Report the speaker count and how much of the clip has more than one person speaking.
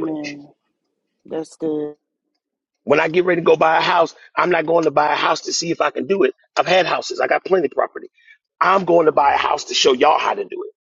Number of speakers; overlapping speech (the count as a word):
two, about 3%